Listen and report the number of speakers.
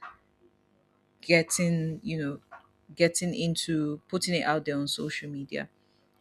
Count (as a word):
one